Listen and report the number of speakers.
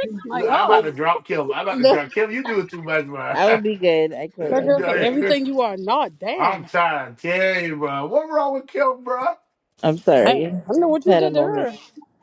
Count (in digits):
3